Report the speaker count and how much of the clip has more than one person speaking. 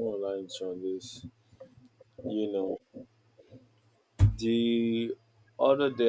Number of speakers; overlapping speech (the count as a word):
one, no overlap